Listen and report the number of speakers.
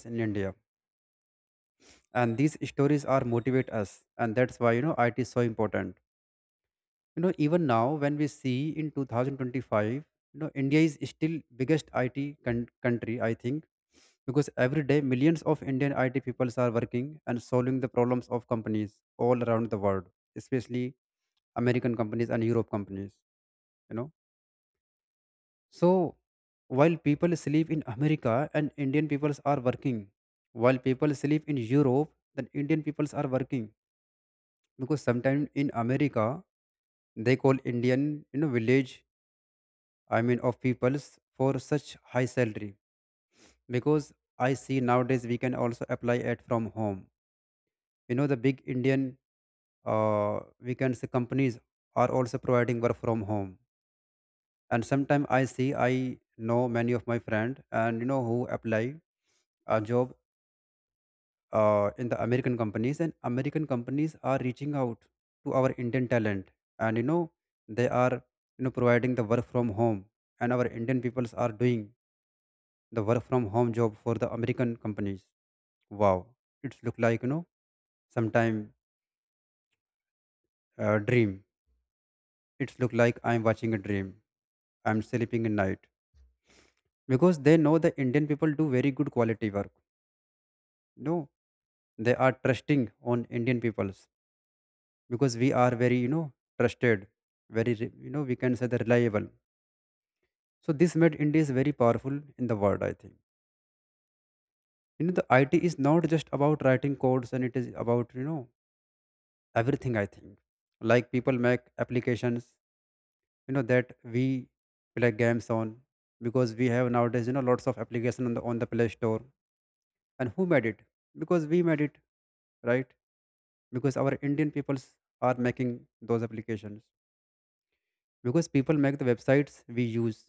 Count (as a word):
one